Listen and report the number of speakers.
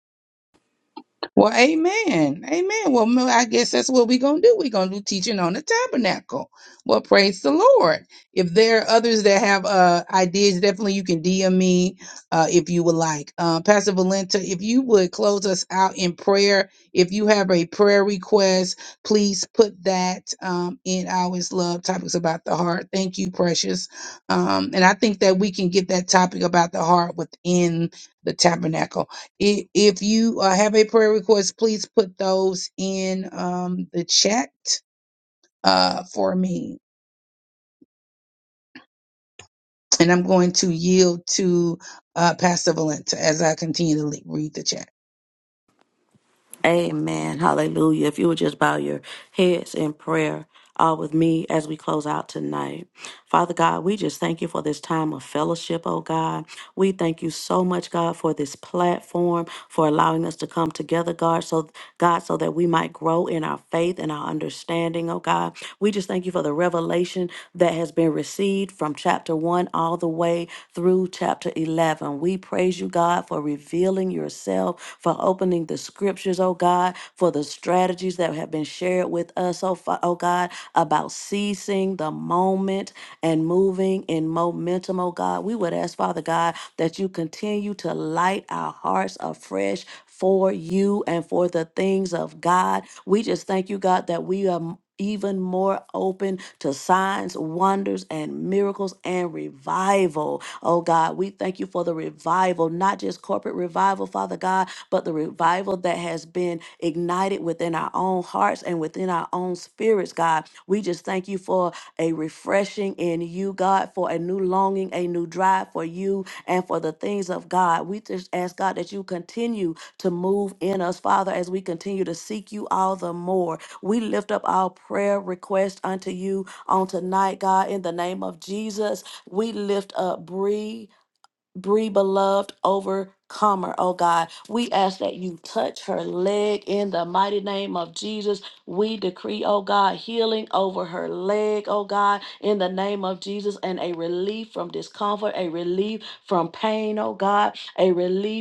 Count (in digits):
2